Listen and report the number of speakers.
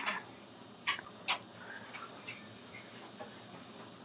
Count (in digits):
0